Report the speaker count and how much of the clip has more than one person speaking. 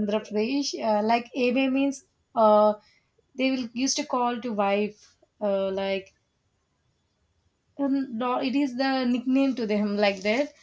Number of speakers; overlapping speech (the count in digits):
1, no overlap